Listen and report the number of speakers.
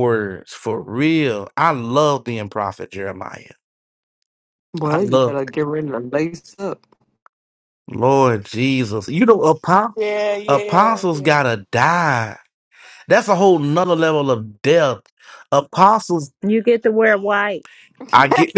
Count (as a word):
four